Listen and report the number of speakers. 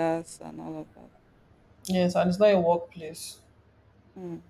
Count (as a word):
two